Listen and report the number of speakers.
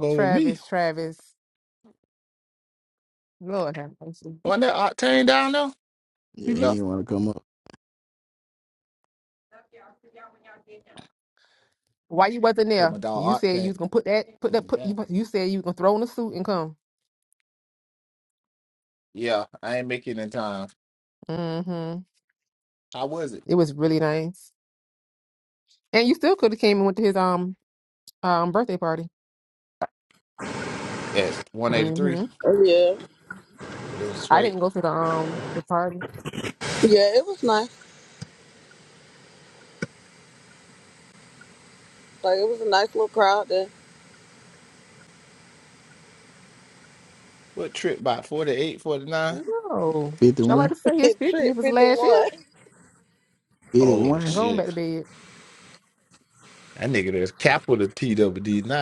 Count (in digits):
4